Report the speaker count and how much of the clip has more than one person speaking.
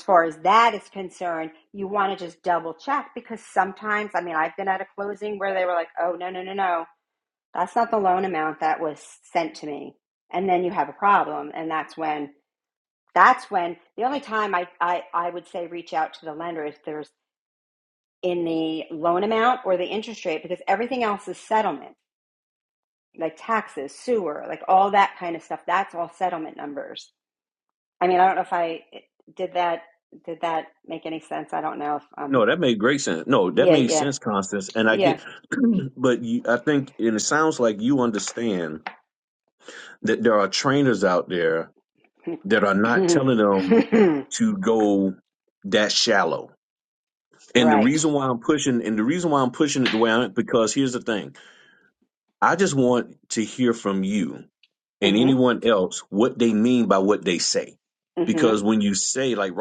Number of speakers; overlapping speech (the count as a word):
two, about 4%